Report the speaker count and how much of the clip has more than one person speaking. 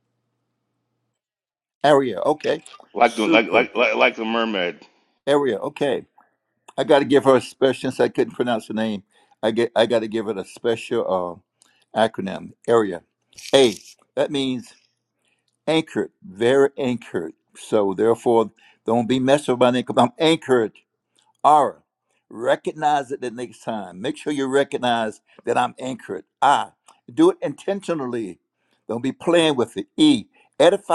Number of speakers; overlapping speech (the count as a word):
two, about 2%